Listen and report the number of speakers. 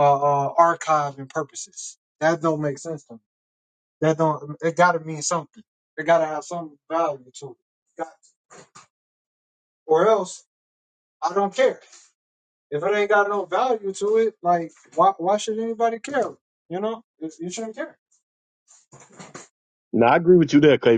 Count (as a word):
two